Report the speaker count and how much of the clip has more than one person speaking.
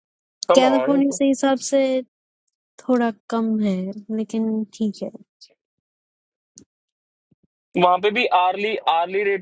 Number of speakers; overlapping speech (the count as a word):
two, about 5%